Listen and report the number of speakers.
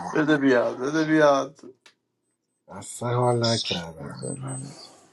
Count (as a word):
two